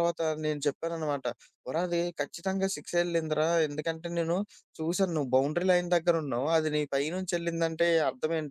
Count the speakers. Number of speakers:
one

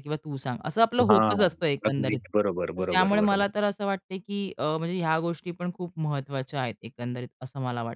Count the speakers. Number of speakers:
two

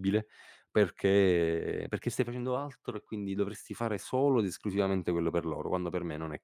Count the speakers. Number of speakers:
one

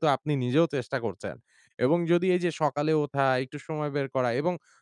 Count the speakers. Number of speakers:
one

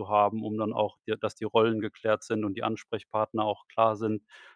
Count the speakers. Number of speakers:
one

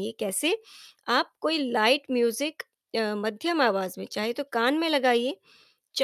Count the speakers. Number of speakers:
one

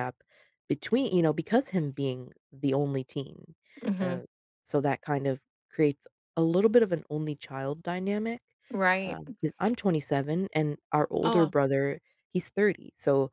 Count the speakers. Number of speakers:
two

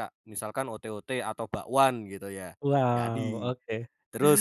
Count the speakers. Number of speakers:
two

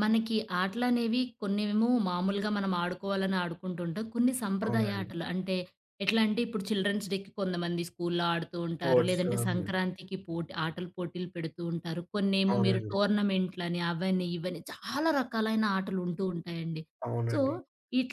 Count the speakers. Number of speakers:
two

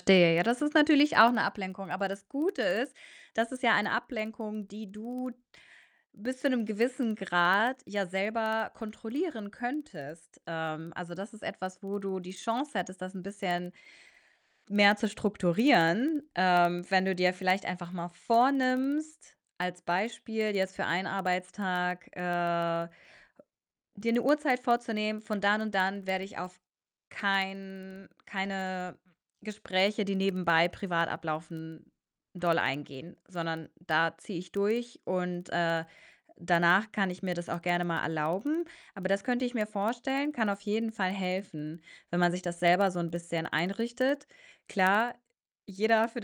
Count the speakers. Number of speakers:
one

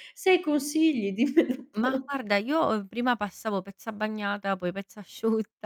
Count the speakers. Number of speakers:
two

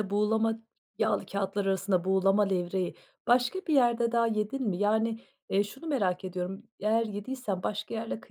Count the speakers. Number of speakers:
one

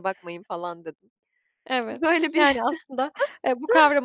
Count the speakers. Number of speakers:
two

